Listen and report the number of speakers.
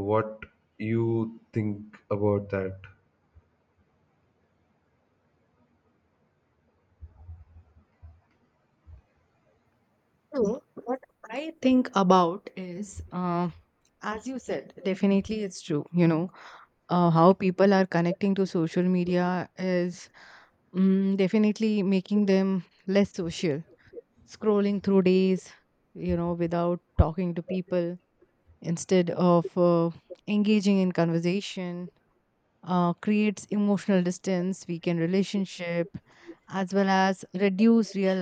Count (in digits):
2